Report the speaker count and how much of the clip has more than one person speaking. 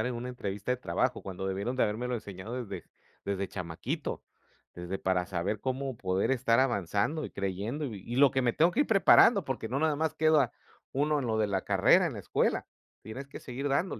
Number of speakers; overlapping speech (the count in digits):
1, no overlap